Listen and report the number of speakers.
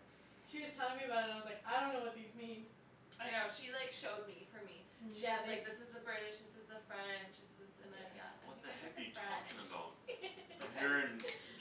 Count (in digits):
3